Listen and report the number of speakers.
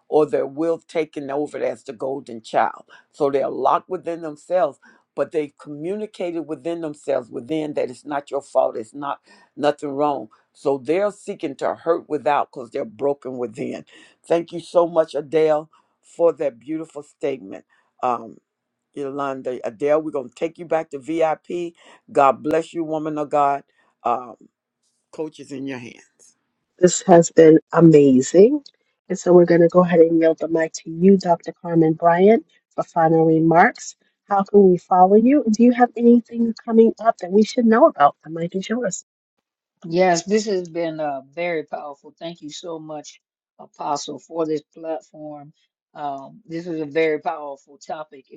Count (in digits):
3